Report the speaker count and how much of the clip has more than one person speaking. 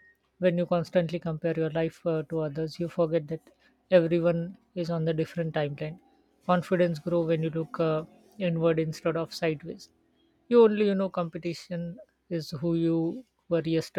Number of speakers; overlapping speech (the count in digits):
1, no overlap